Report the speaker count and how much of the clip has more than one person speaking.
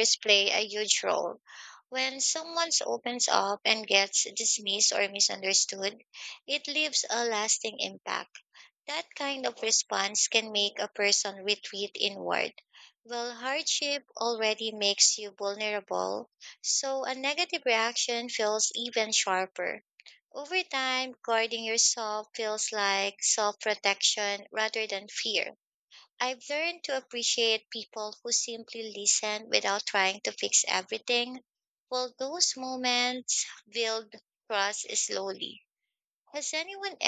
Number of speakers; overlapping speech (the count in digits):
1, no overlap